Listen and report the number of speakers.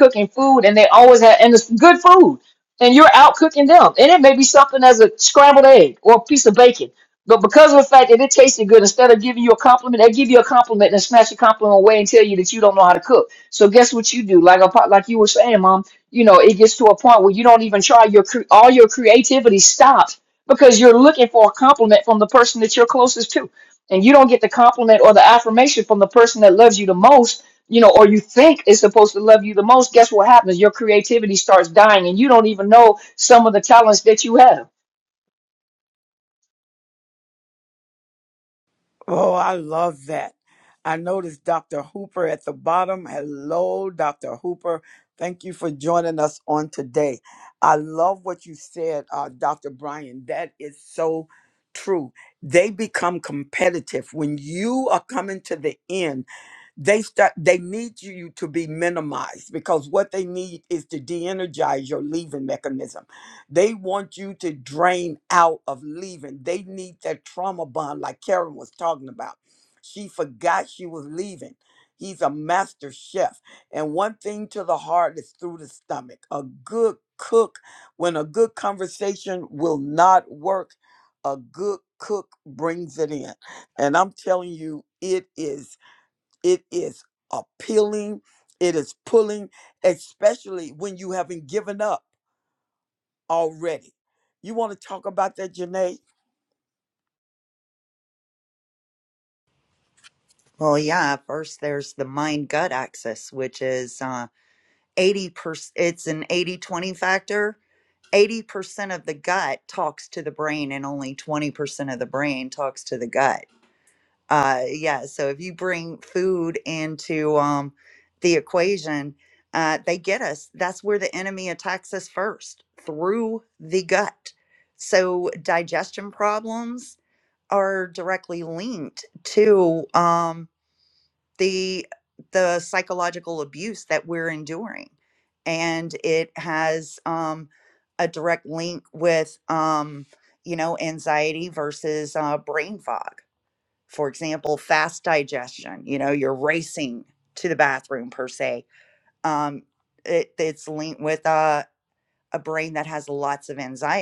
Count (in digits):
3